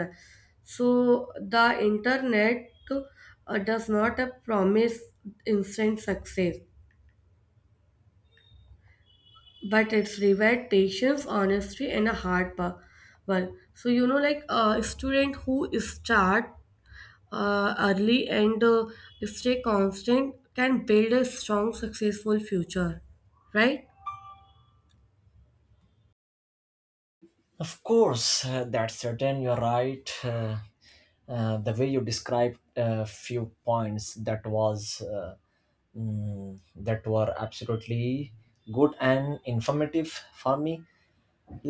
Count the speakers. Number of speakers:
2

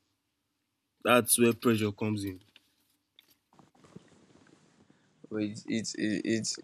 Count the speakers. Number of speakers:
2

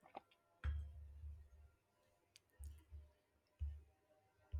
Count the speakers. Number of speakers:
0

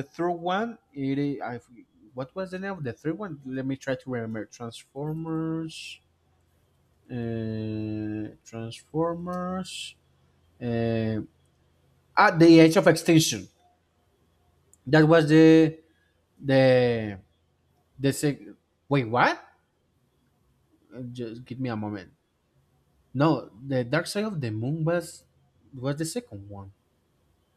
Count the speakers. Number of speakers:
1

